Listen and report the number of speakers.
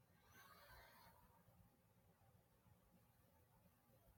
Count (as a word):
zero